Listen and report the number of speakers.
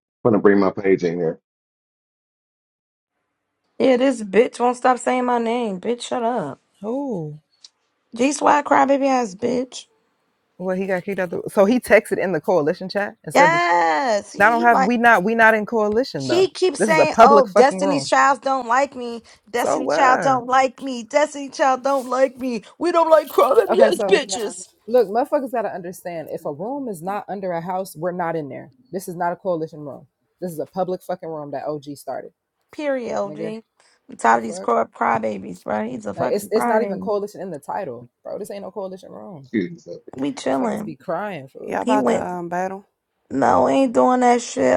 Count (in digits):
4